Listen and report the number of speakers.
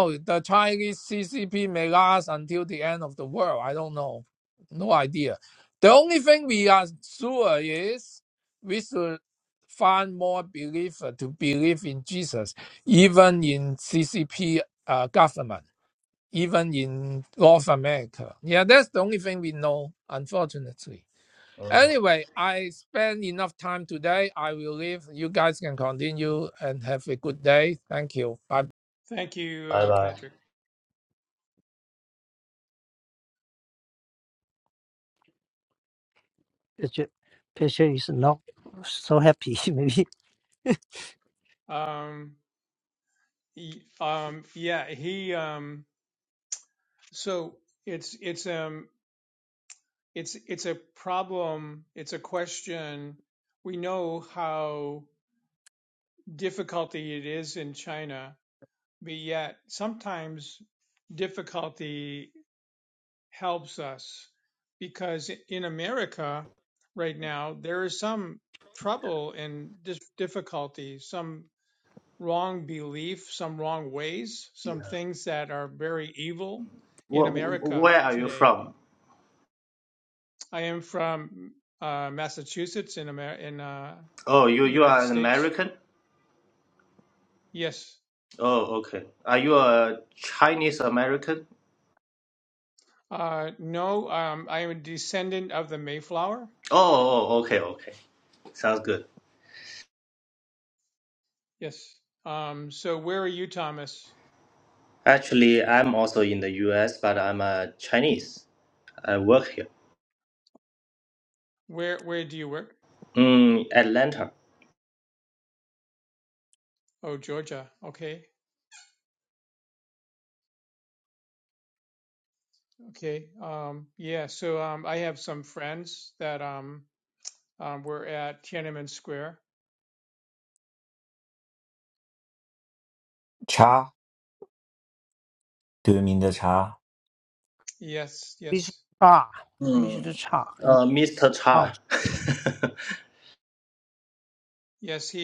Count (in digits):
5